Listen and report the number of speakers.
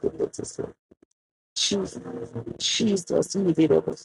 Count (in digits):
1